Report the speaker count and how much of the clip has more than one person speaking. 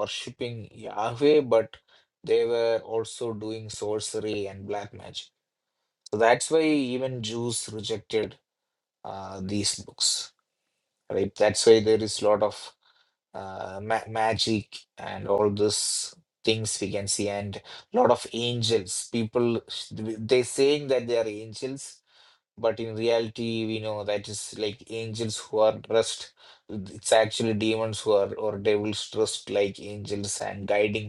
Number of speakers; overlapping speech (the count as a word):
one, no overlap